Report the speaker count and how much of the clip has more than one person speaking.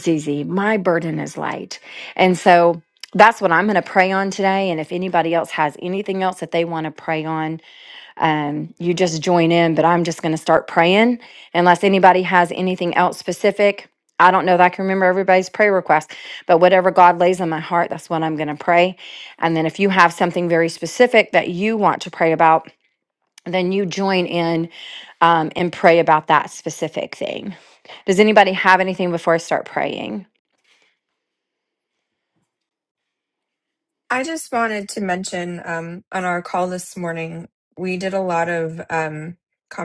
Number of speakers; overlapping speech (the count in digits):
2, no overlap